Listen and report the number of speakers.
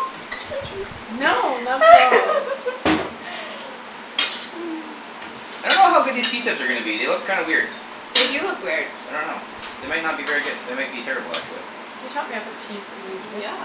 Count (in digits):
3